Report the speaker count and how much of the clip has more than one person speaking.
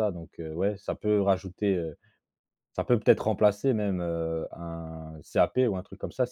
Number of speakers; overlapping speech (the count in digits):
1, no overlap